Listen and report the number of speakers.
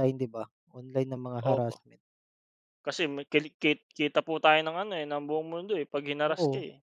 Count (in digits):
2